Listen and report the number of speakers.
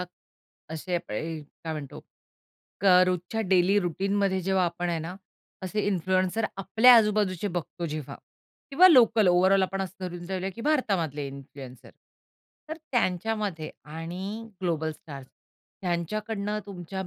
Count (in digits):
1